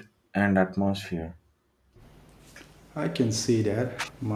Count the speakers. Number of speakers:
two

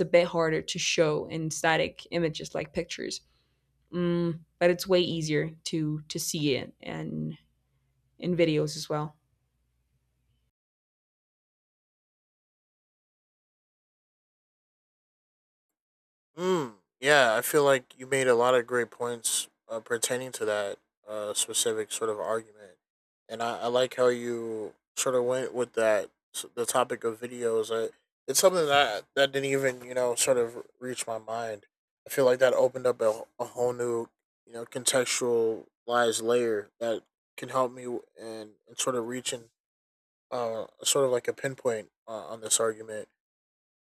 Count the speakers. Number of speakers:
two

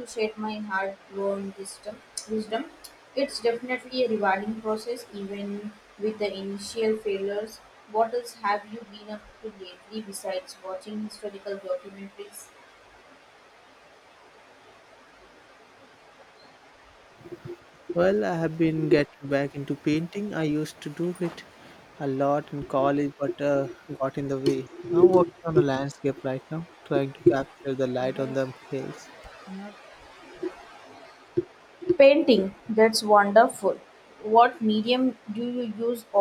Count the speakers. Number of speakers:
two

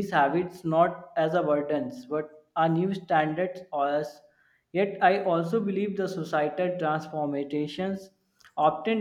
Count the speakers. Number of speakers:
one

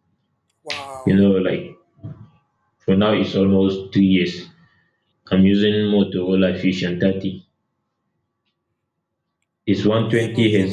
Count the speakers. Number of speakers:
two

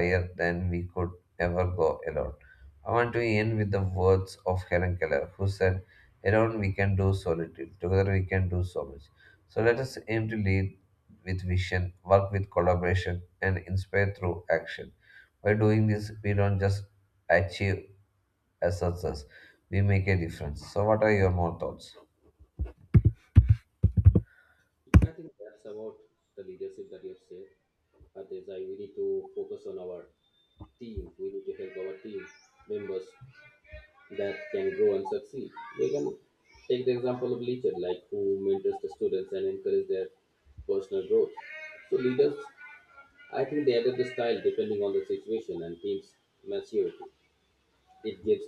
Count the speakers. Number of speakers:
two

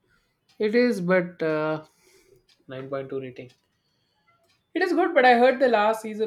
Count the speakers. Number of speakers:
one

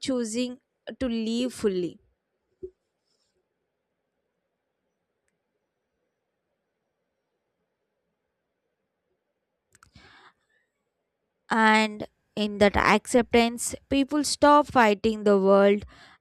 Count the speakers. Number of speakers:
one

